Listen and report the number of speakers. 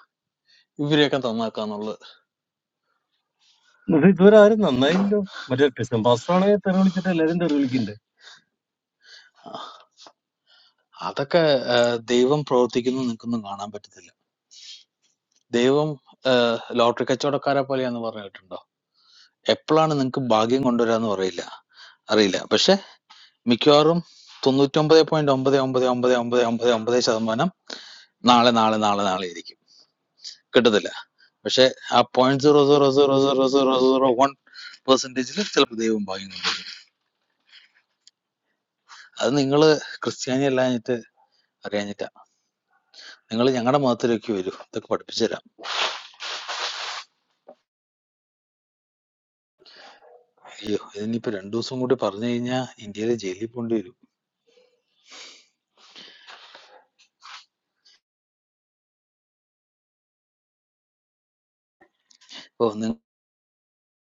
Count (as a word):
two